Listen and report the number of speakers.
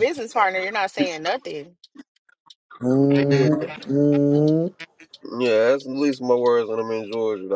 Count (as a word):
three